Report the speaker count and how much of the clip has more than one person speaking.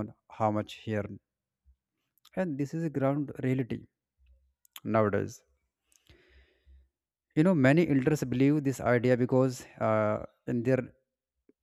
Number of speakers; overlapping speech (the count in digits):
1, no overlap